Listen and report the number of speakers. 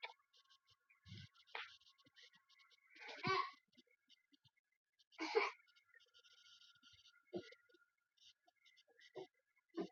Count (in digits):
0